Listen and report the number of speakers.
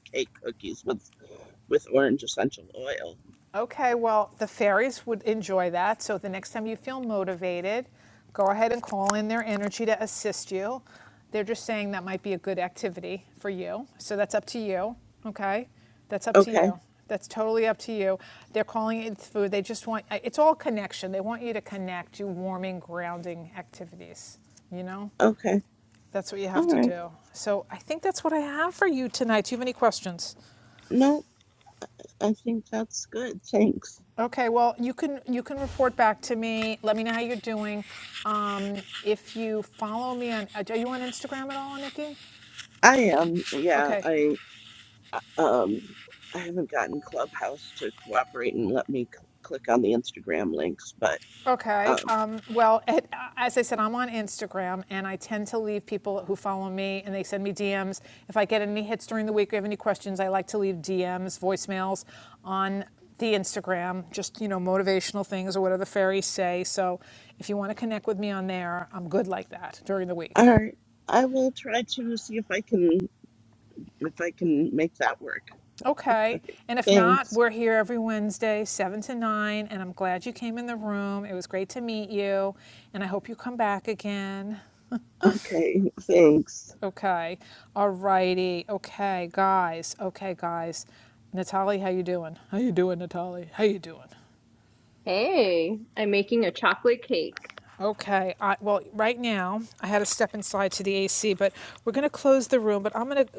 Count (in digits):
3